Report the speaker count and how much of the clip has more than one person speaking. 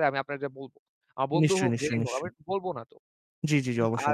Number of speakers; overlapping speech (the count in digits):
2, about 25%